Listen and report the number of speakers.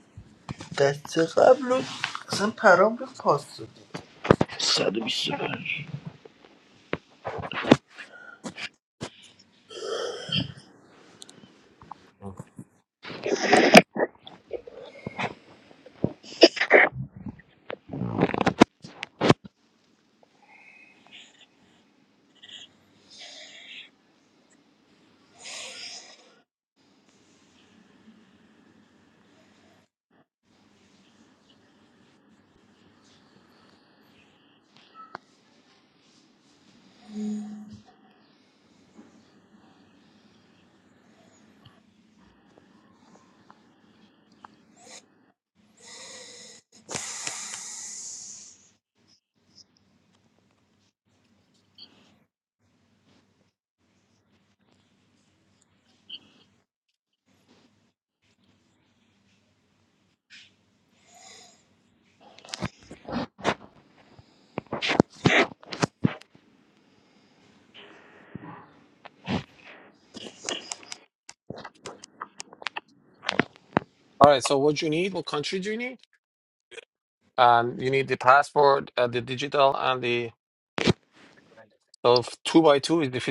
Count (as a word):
two